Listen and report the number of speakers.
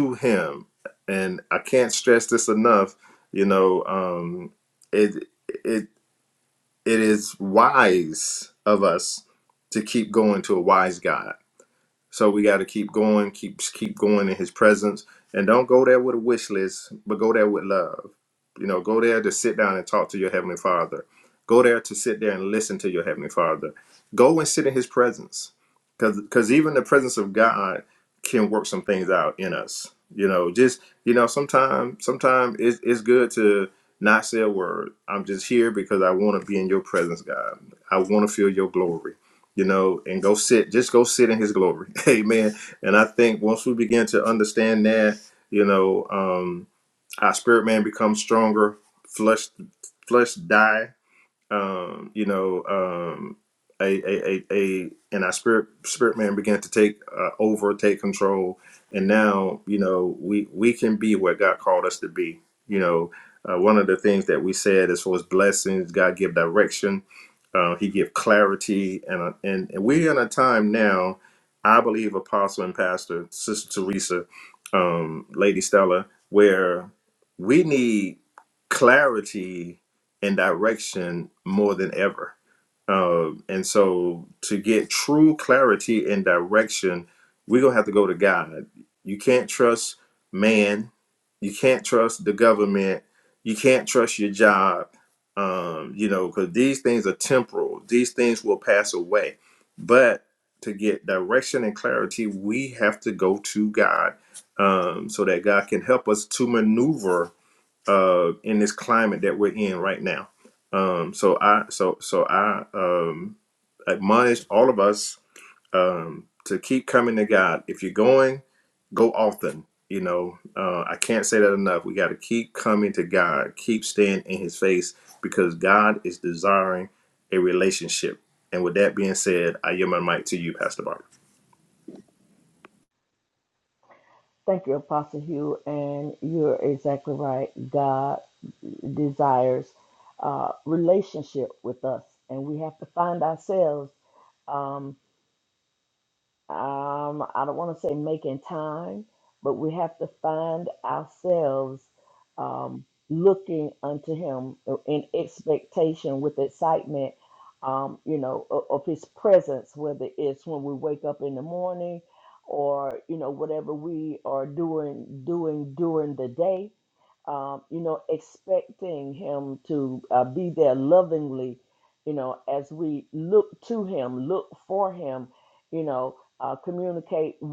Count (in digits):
2